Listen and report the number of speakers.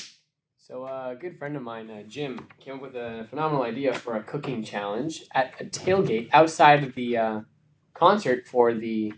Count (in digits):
1